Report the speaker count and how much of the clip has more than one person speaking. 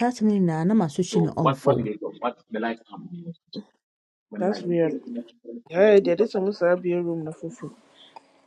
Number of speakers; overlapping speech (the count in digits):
3, about 13%